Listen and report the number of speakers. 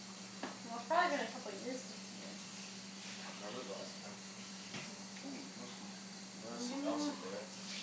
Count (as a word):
two